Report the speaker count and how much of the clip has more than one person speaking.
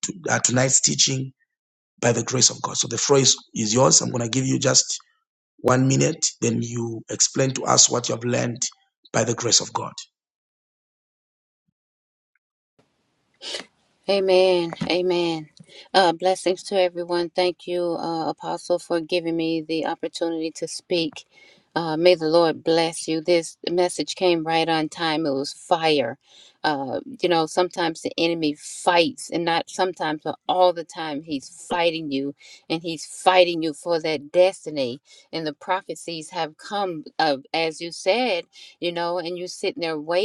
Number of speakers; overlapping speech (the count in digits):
2, no overlap